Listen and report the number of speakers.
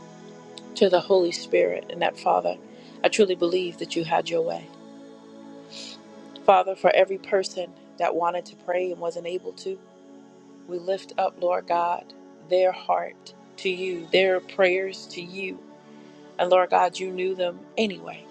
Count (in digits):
1